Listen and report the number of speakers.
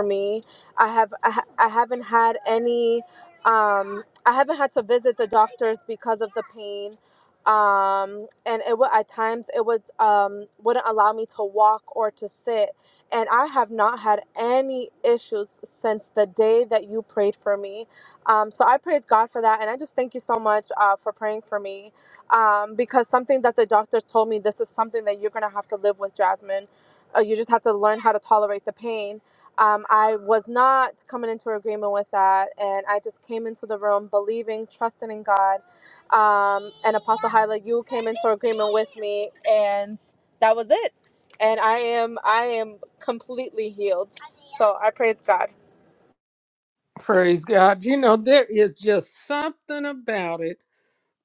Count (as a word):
two